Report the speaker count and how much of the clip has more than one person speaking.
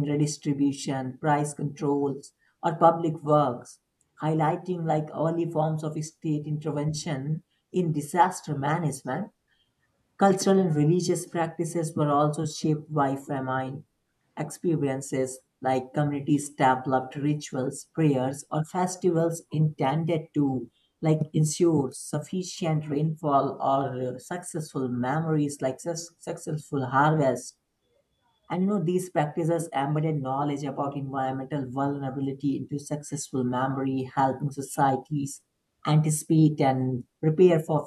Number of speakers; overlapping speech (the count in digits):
1, no overlap